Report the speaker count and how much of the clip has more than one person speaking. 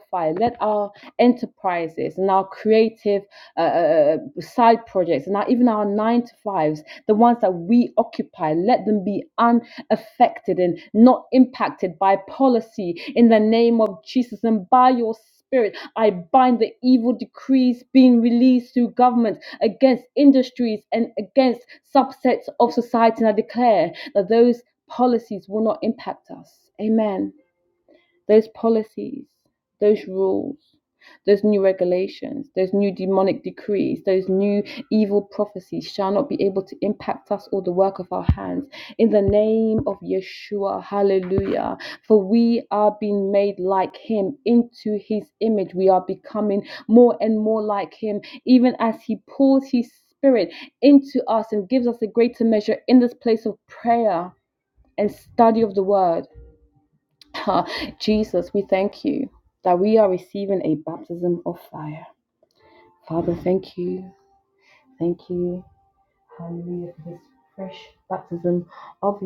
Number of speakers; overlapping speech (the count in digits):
1, no overlap